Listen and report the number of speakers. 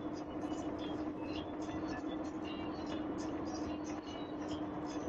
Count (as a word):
zero